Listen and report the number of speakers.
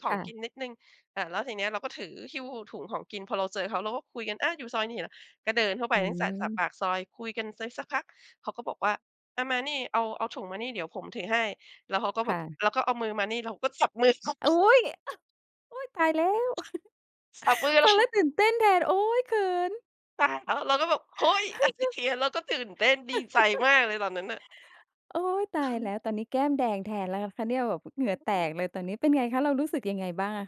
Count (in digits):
2